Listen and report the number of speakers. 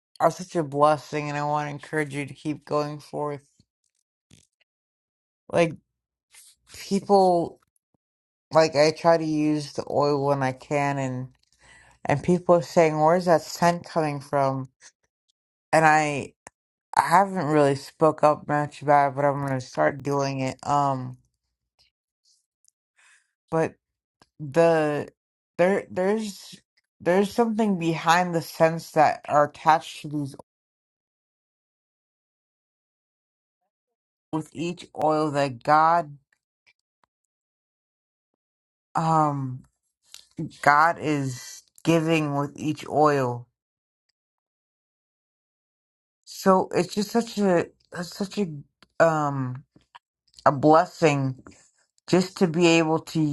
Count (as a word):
one